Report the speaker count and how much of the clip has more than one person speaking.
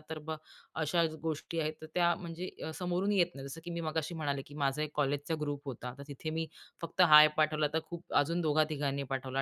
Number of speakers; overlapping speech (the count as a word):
one, no overlap